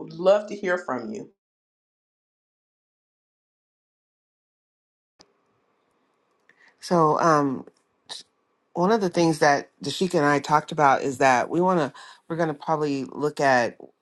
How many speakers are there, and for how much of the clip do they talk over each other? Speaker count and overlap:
2, no overlap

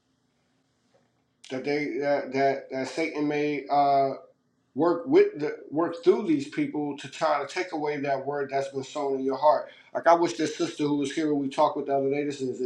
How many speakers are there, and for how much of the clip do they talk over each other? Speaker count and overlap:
1, no overlap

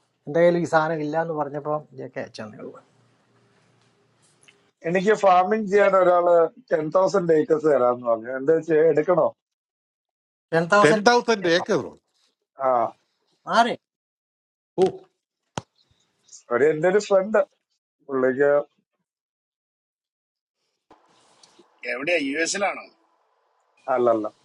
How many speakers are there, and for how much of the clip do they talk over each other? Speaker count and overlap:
4, about 1%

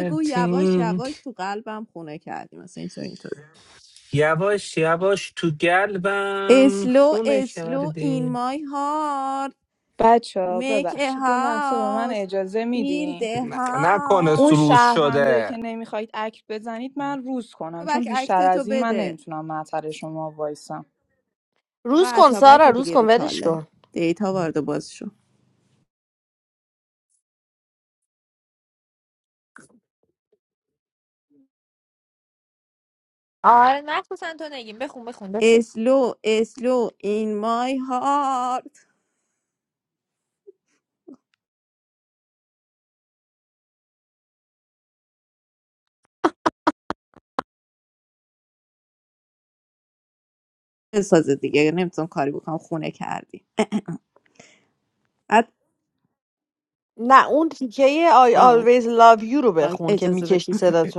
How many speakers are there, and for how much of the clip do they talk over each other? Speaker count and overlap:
5, about 18%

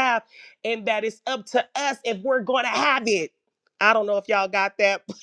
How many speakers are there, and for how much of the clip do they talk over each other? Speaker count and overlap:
1, no overlap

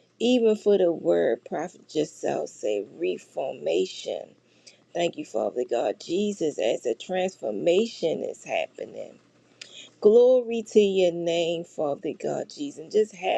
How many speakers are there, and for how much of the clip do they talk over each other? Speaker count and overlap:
1, no overlap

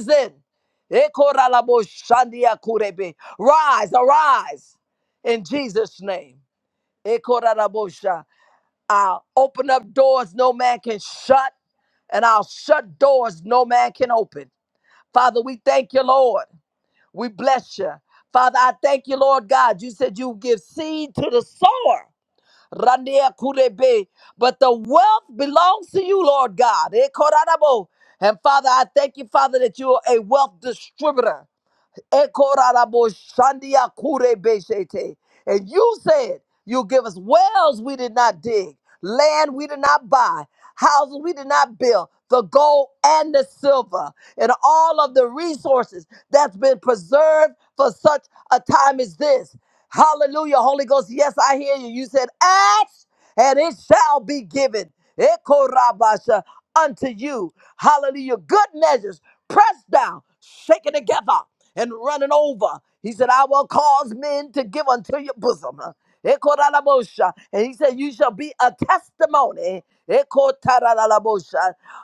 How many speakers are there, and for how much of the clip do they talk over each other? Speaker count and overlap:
1, no overlap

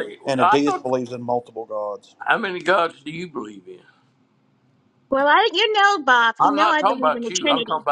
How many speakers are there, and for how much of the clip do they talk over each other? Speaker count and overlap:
3, about 26%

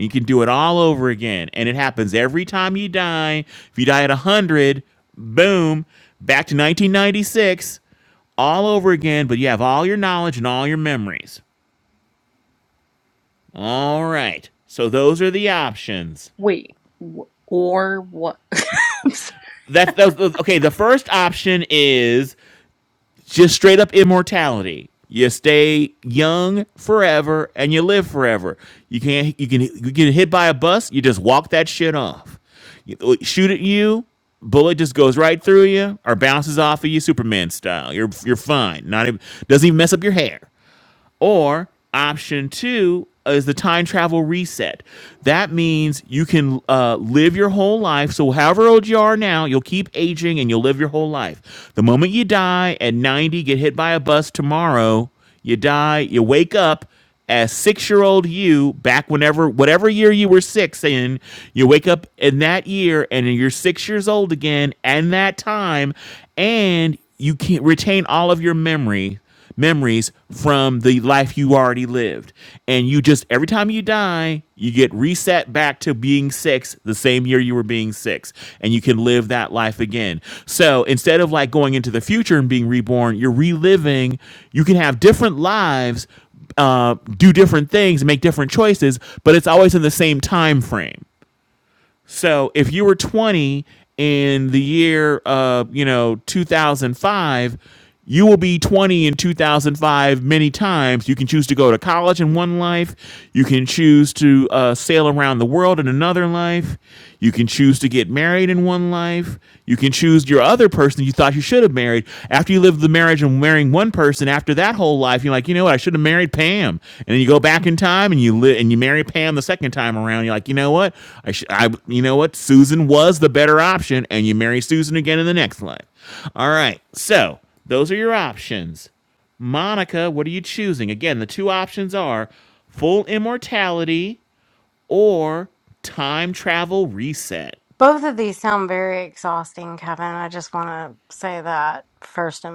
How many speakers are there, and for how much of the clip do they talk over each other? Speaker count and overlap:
3, no overlap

